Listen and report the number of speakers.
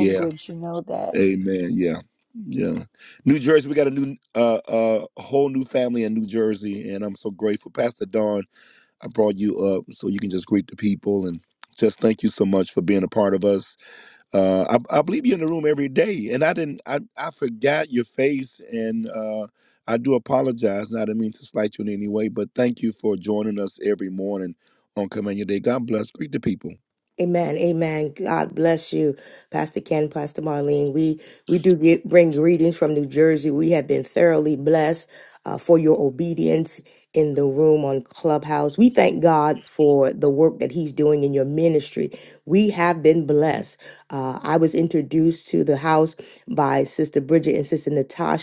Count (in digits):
3